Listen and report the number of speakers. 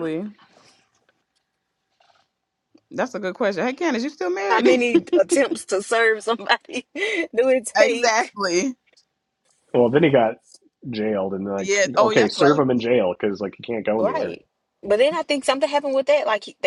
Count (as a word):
three